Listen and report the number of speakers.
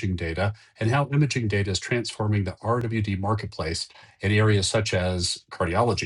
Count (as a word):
one